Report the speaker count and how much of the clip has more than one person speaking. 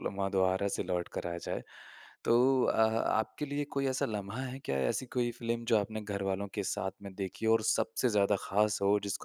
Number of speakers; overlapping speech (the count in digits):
1, no overlap